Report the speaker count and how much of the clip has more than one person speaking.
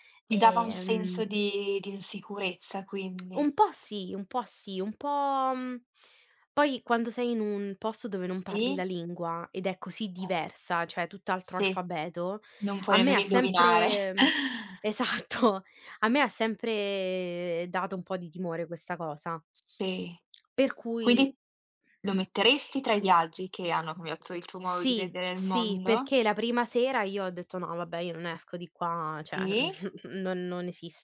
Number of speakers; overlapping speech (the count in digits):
2, about 14%